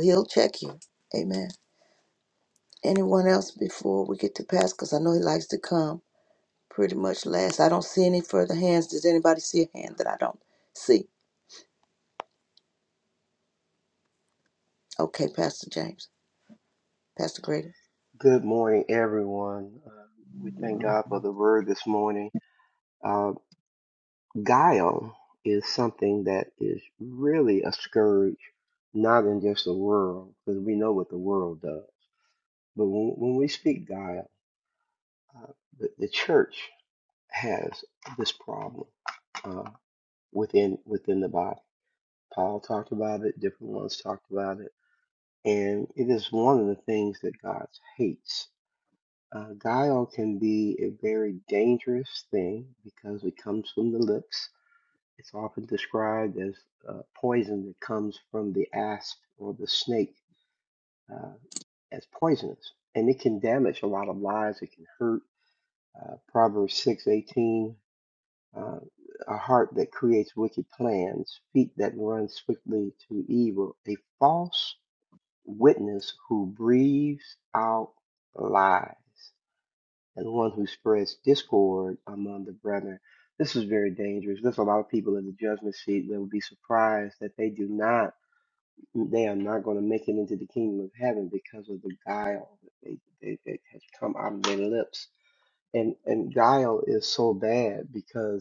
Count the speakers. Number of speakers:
2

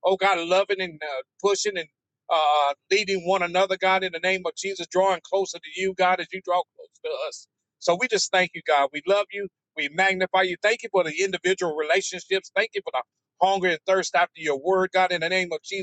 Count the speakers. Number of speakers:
1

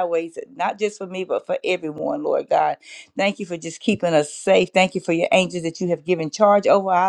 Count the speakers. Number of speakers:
1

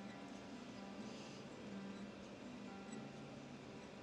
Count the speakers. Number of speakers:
0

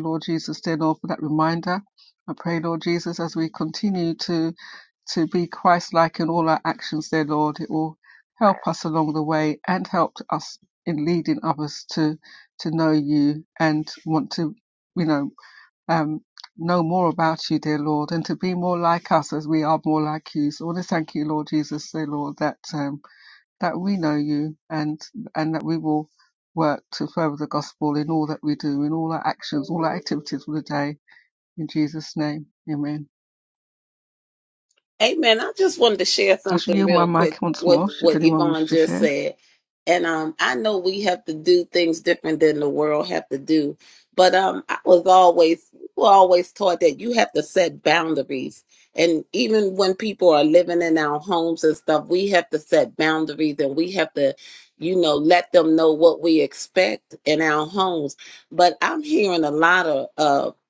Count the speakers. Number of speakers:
2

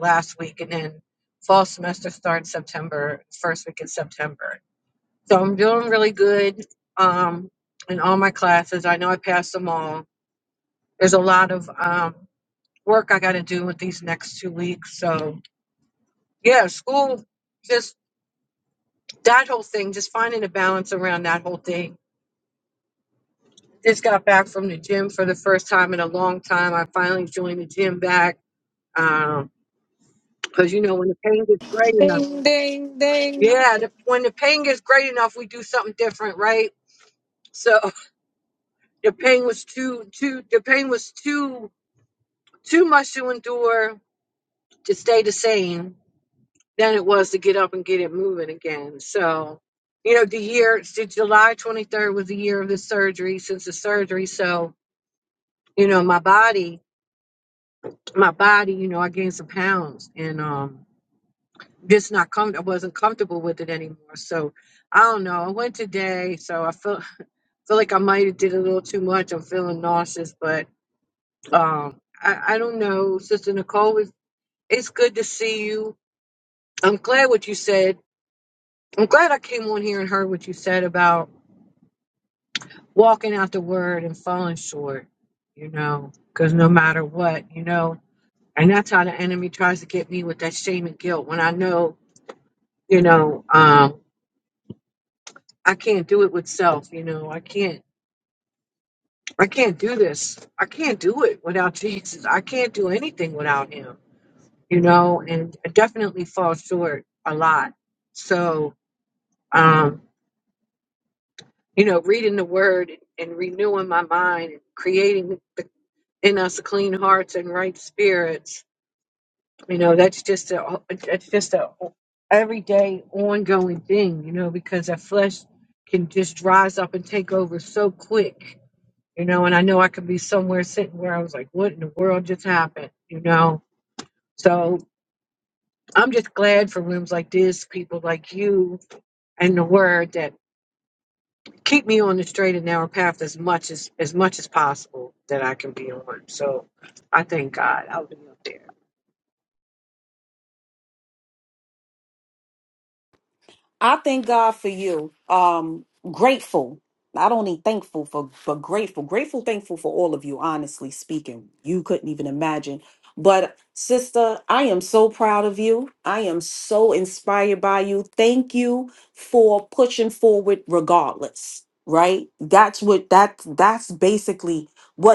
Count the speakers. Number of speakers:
3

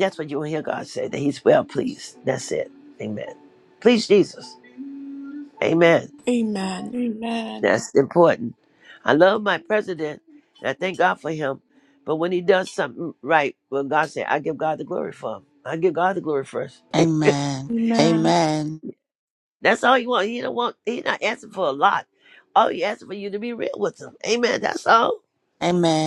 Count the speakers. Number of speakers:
3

